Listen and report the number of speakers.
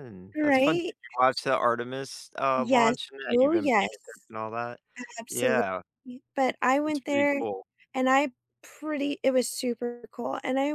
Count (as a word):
two